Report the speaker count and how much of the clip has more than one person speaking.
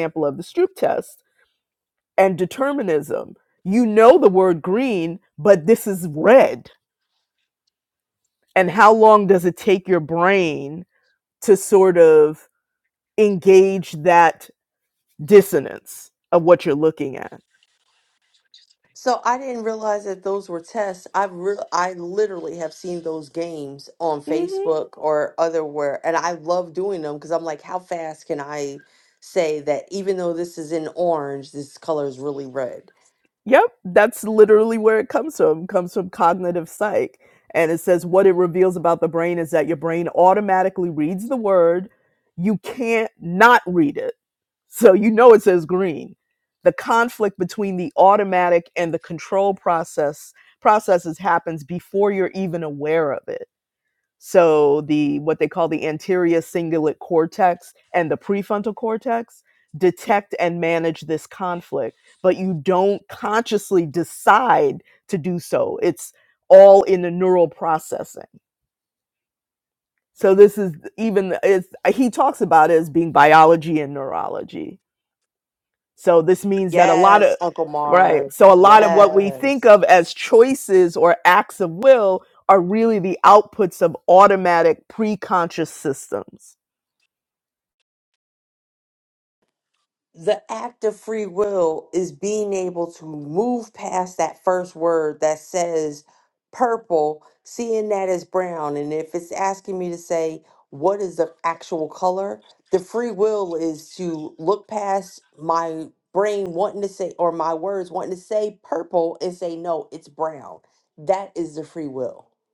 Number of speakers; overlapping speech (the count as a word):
two, about 2%